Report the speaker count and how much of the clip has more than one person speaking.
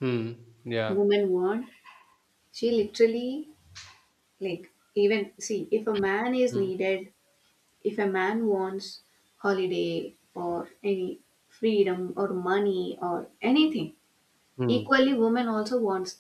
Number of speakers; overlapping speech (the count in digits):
2, about 3%